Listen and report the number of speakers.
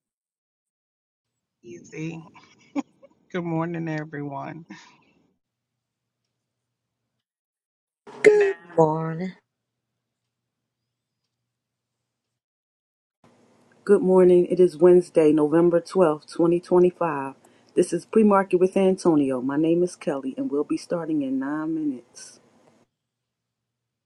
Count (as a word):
three